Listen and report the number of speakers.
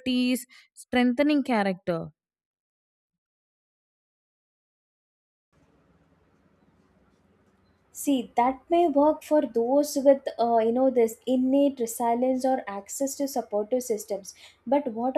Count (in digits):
2